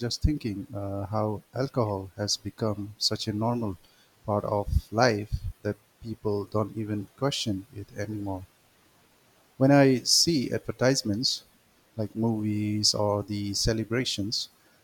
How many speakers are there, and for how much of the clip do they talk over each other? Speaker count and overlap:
one, no overlap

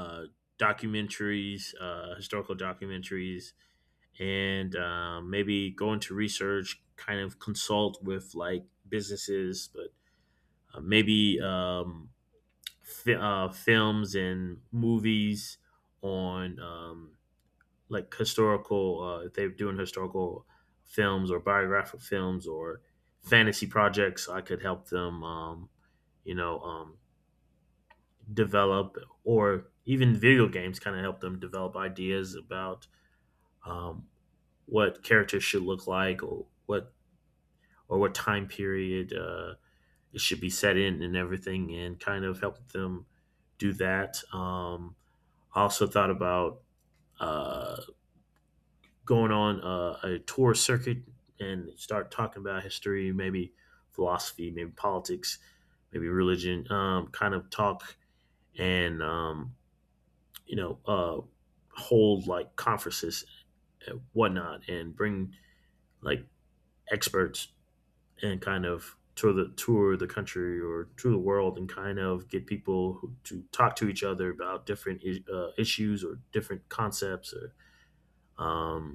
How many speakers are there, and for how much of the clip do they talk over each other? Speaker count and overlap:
one, no overlap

